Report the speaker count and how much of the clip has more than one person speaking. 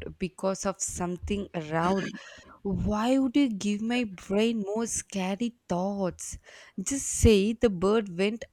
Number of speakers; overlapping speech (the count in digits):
1, no overlap